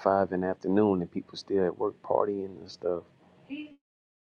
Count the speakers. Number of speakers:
1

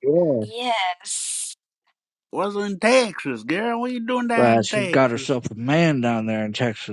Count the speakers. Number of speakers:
3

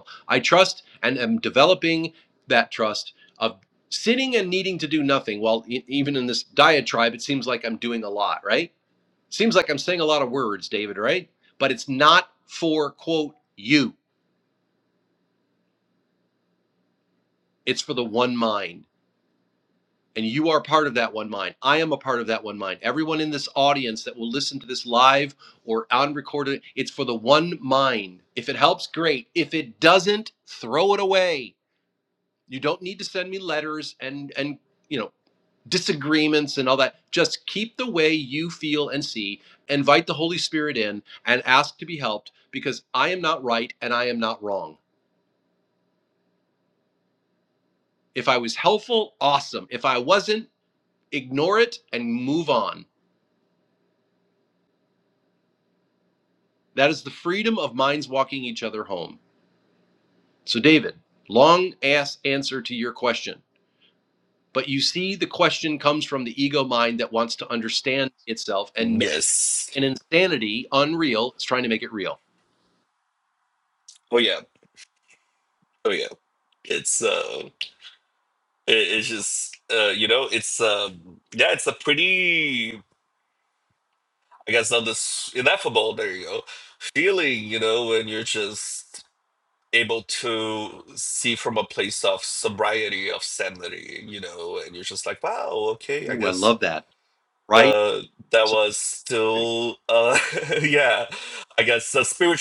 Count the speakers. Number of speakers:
2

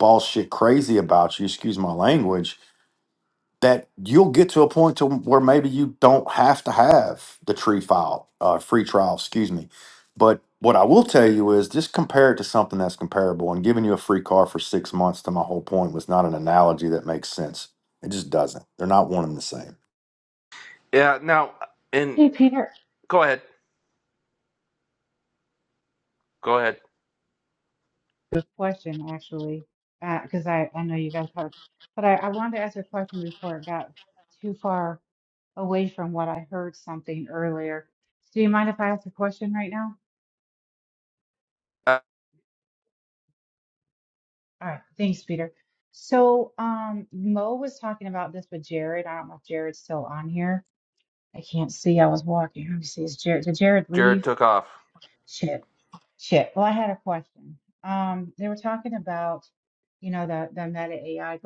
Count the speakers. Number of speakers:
3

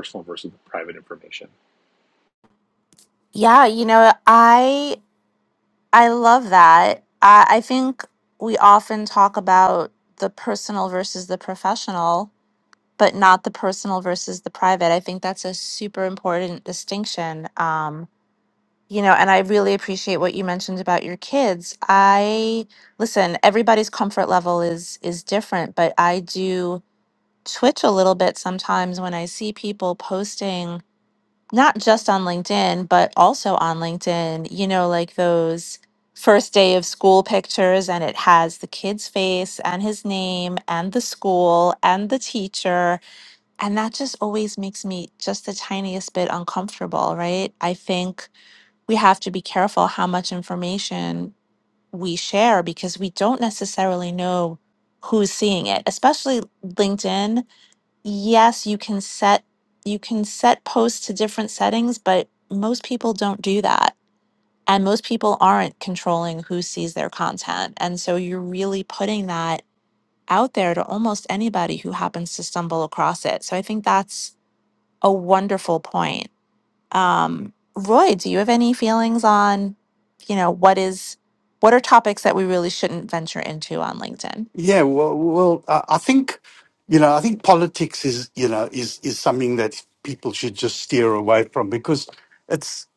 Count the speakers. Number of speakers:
3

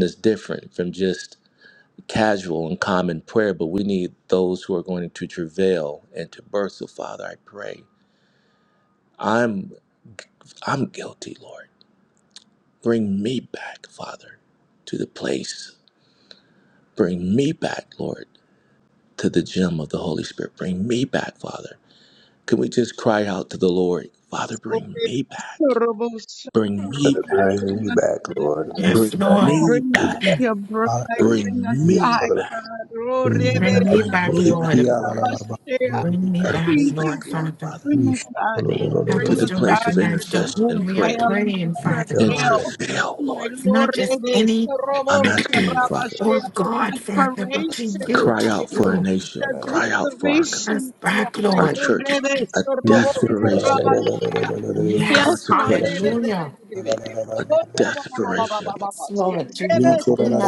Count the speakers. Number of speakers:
4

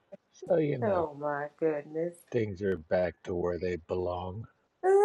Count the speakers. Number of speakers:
2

